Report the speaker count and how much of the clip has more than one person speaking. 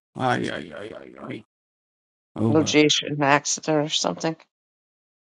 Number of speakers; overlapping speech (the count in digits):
2, about 5%